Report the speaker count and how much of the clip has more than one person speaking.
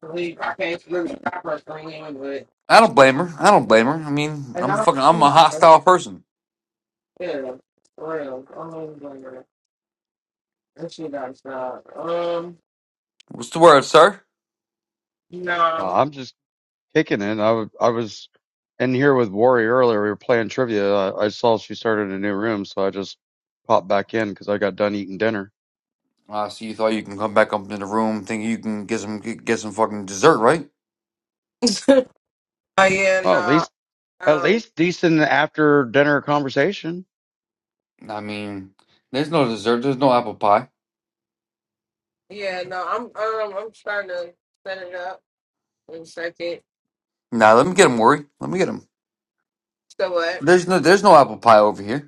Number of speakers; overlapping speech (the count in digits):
3, about 4%